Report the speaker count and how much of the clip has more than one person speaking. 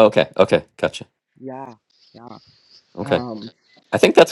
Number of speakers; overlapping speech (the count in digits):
2, about 4%